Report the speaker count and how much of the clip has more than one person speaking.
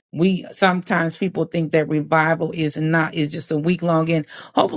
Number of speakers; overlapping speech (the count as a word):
one, no overlap